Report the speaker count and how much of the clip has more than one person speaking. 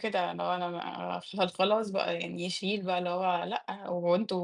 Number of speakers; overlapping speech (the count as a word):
one, no overlap